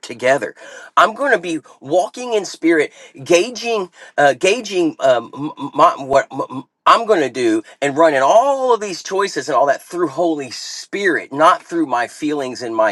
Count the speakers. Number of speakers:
1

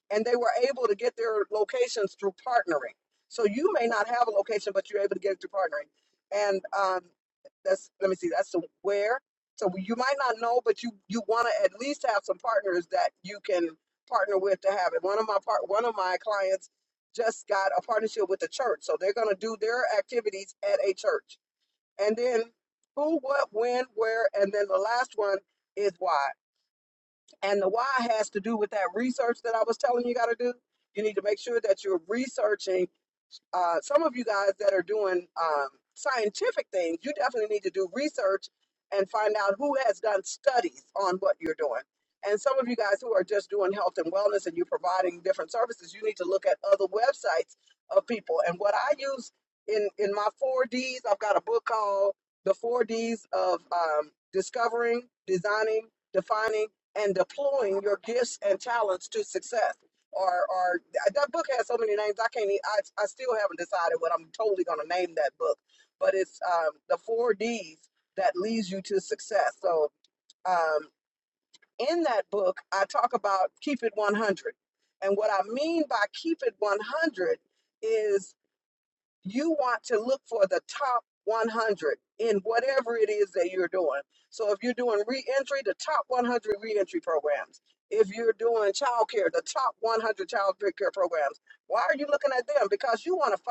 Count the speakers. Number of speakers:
1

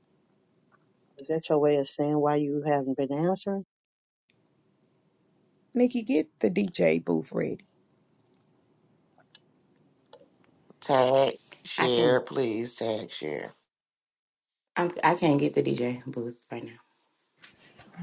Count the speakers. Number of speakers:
4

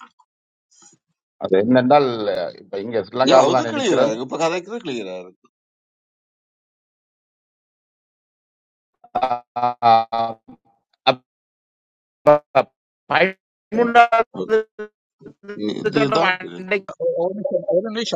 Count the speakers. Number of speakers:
3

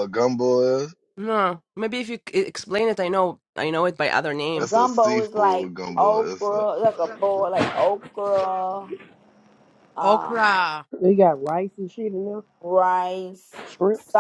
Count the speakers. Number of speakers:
4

